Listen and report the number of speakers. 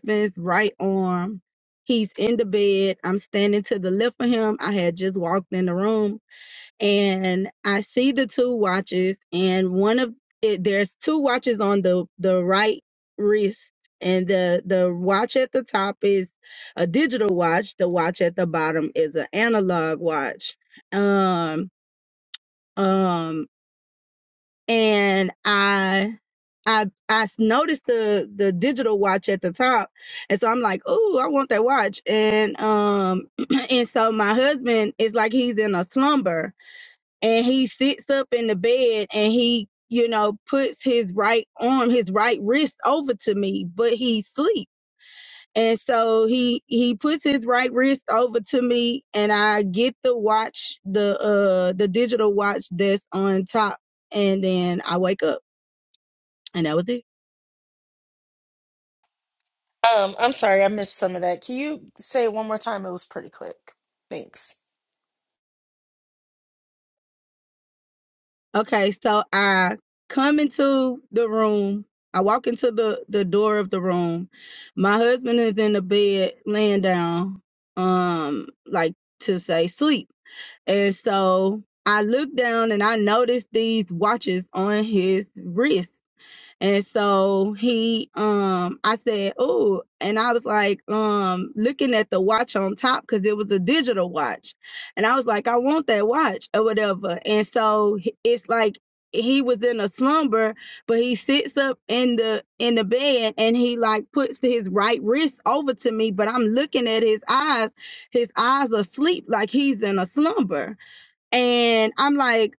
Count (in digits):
2